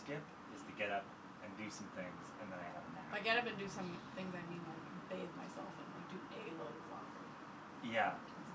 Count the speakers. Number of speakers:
two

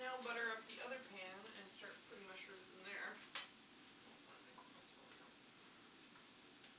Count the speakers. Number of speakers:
one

